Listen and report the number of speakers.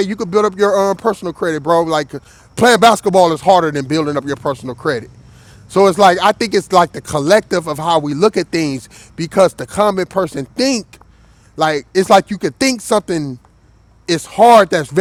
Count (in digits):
1